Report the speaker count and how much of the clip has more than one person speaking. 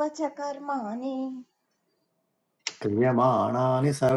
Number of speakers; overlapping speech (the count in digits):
2, no overlap